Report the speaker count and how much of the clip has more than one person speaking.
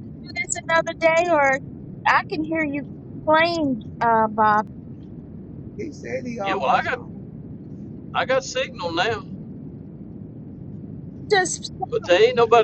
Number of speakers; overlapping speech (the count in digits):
3, about 5%